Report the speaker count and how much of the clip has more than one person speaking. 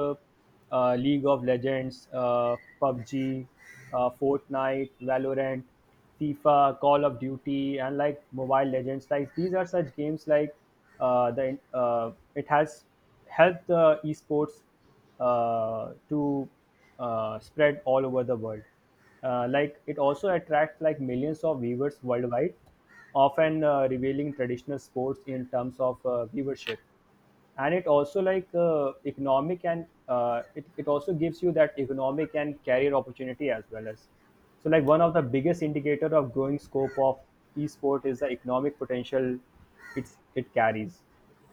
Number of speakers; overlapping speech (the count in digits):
1, no overlap